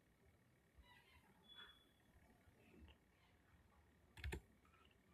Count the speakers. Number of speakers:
zero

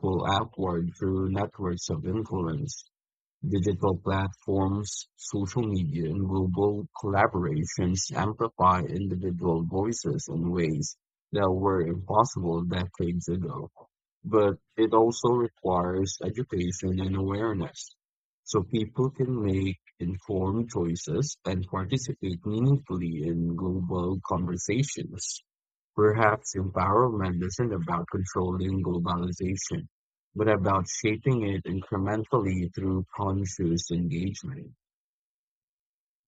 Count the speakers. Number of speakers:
one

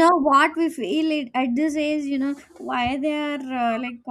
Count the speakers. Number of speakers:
one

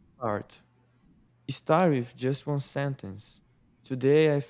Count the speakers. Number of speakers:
one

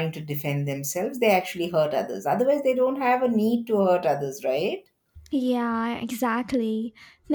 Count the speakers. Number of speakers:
two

